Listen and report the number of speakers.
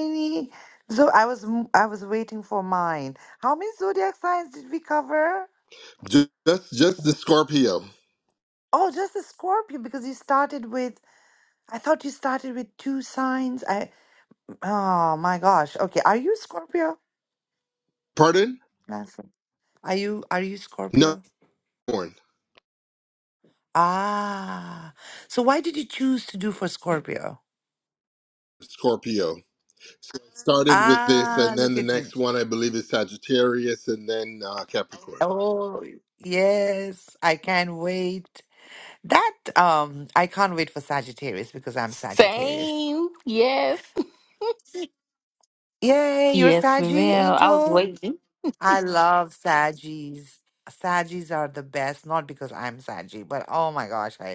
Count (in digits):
3